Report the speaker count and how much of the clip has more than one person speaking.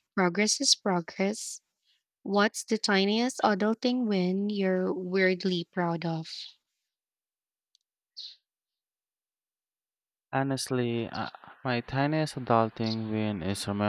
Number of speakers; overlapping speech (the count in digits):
2, no overlap